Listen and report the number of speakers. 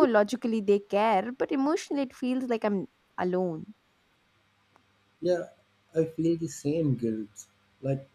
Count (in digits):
2